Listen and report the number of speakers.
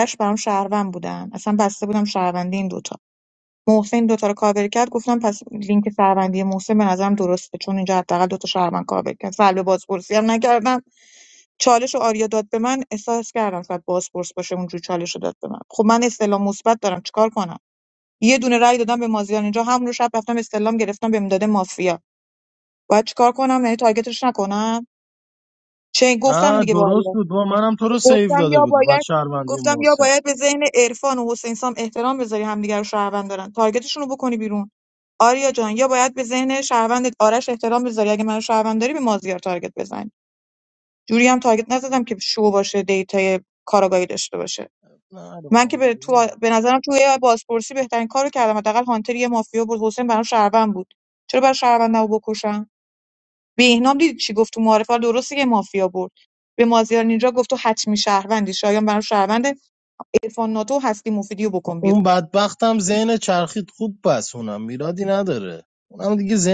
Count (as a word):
two